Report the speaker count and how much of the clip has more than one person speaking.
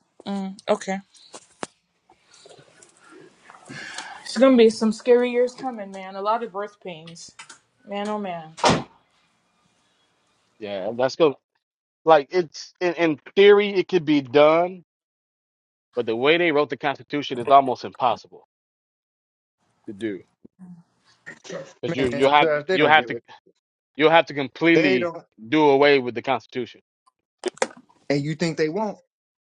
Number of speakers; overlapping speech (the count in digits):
3, about 5%